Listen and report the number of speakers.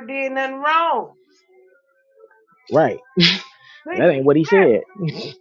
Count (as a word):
two